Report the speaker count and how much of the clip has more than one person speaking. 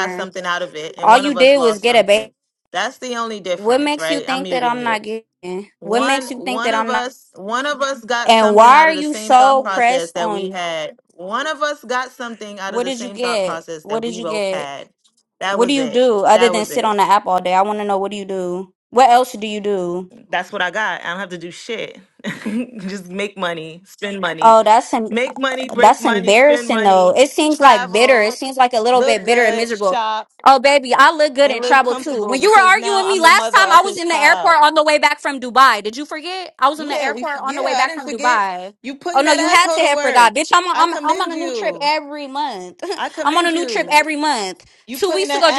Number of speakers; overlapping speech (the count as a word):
two, about 48%